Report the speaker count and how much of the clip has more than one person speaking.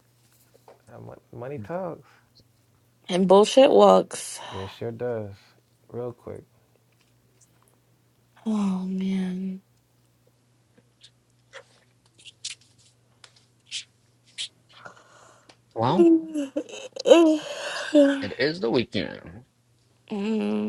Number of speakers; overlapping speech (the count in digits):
3, no overlap